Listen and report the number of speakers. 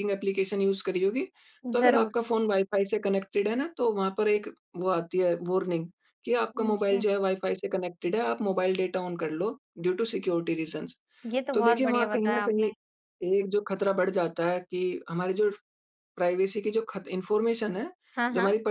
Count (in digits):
2